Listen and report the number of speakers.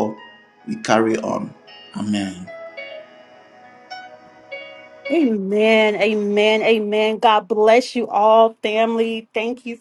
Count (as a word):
two